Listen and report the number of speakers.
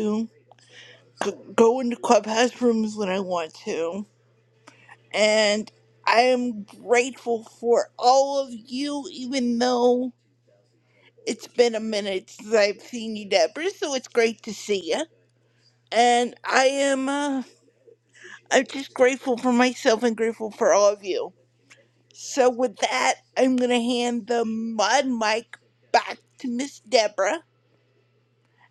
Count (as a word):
one